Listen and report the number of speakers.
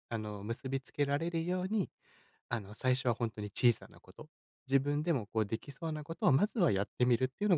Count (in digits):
1